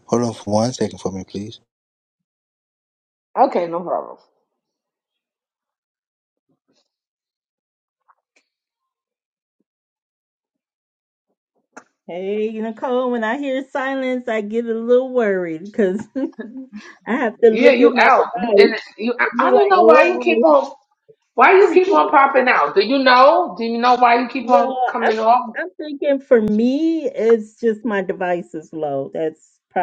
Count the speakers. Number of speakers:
3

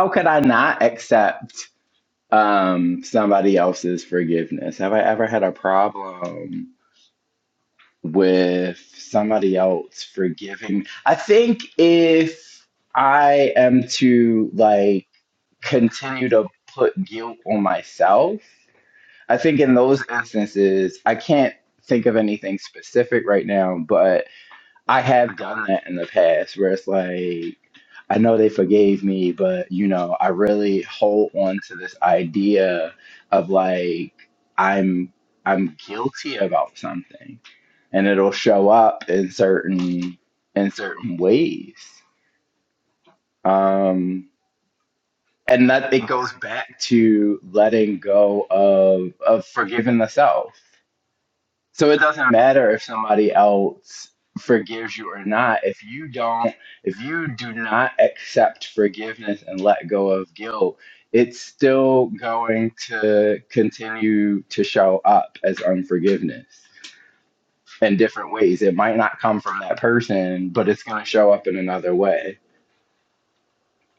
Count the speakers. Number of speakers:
1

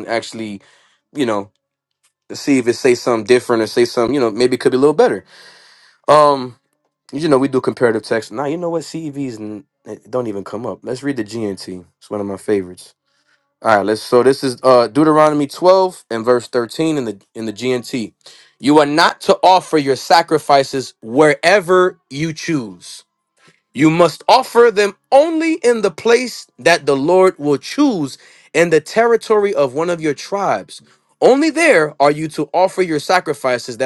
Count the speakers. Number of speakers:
1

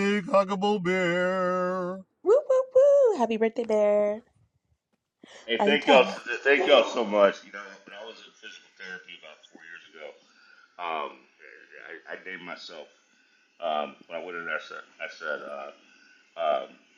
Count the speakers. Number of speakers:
3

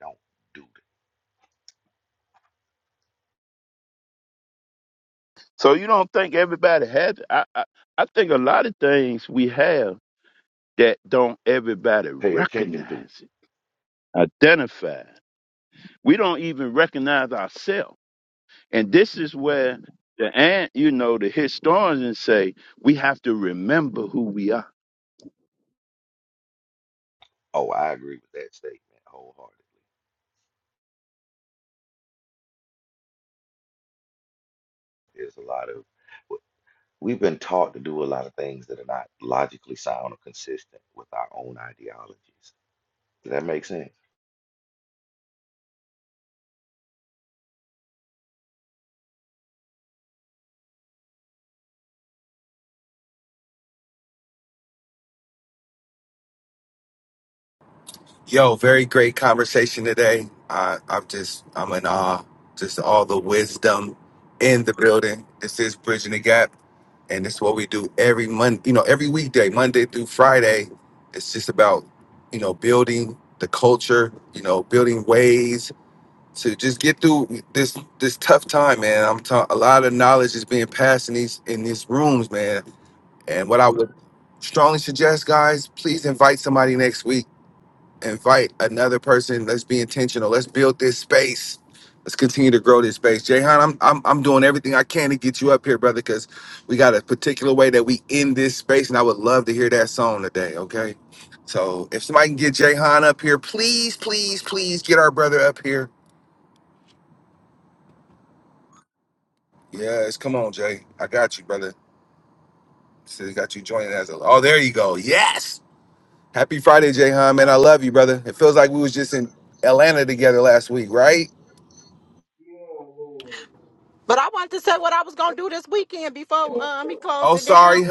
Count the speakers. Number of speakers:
4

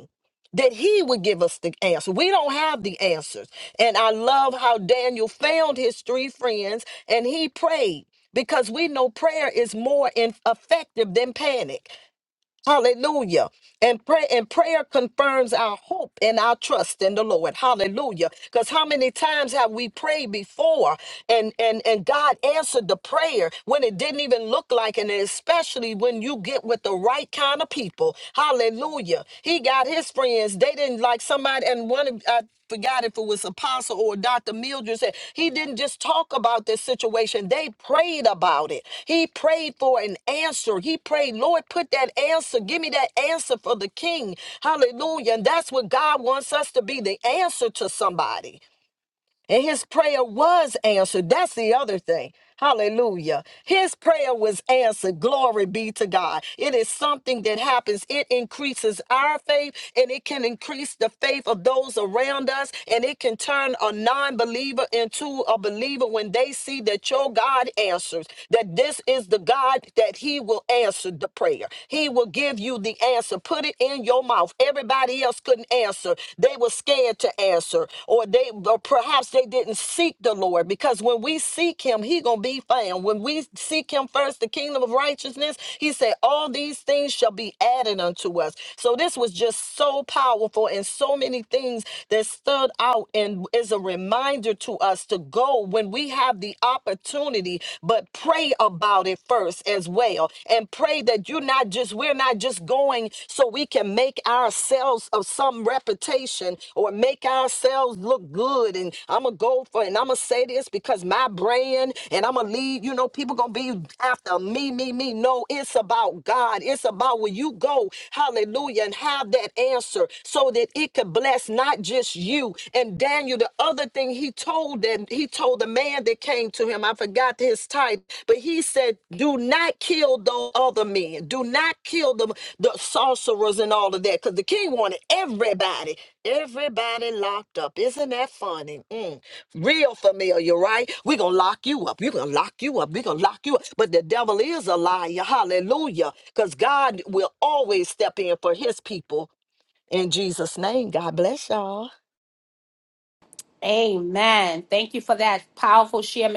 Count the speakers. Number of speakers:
2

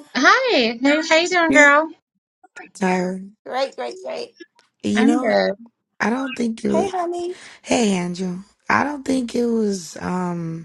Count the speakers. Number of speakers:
3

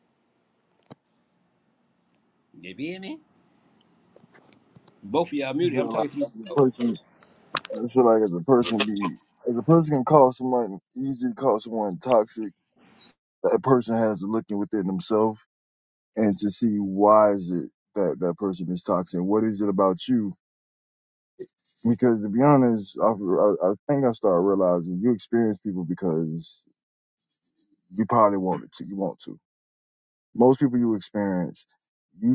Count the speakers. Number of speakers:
2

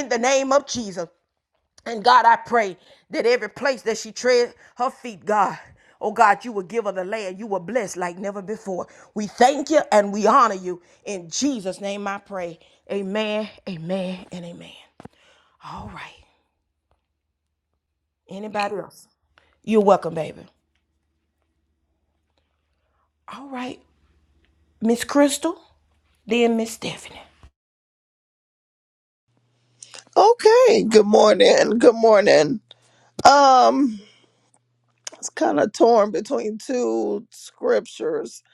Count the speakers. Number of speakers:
2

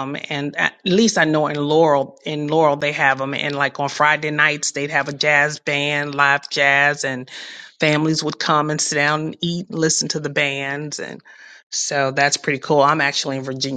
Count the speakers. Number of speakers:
1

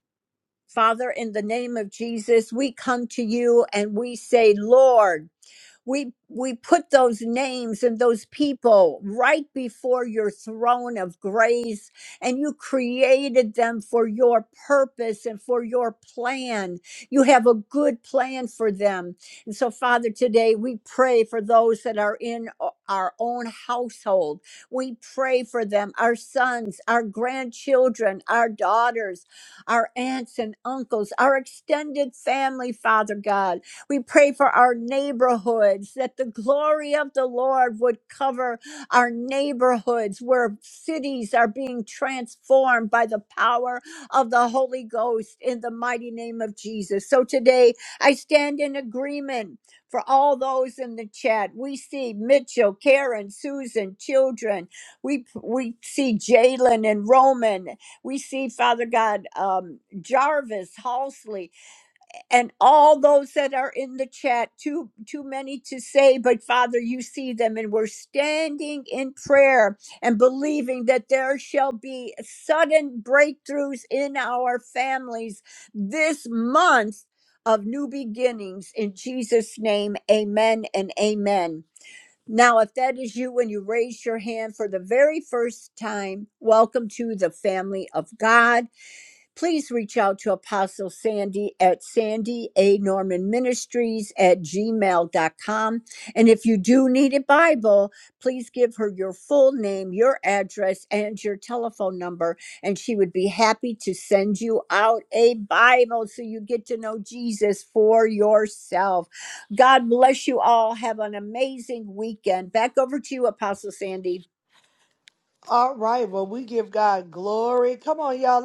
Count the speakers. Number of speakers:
2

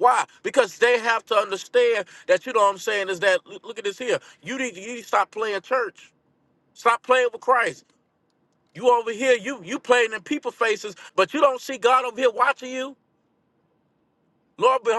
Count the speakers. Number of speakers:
1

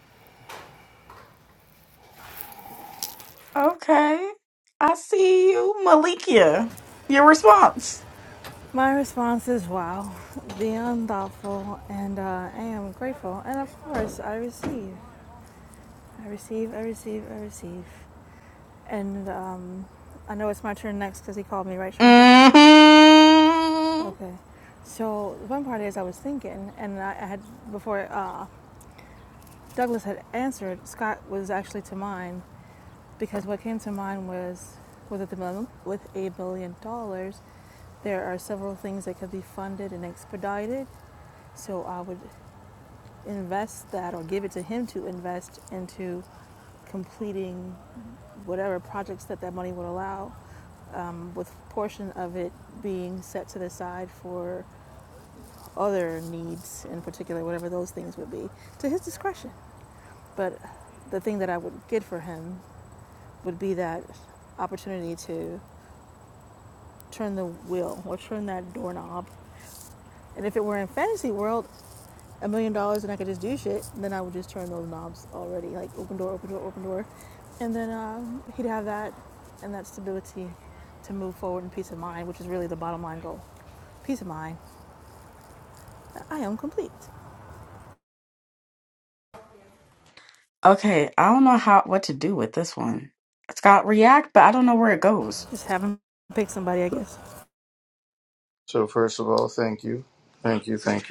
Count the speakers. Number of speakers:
3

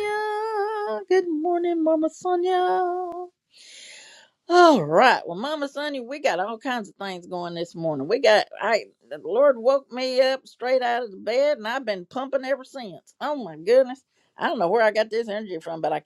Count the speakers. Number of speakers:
1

